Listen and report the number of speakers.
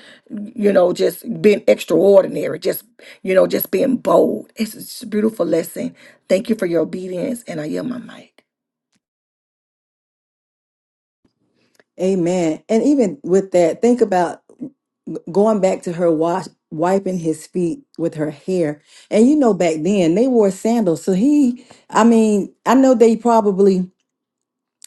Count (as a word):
two